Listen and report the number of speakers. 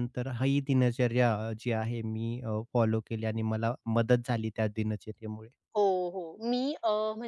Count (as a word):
two